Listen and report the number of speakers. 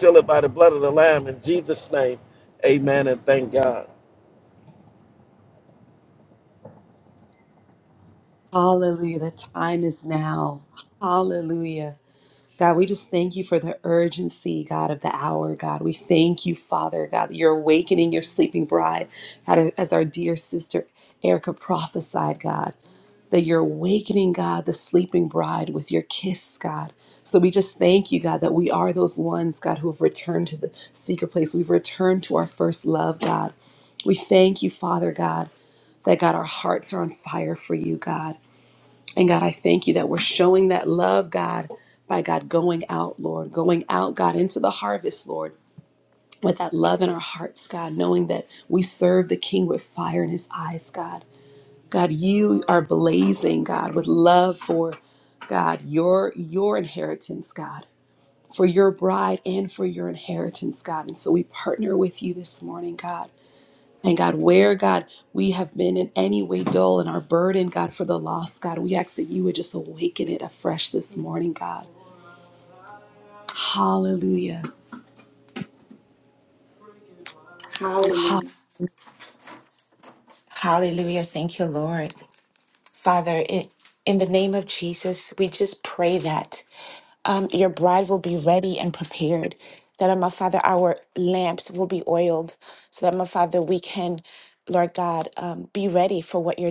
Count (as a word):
three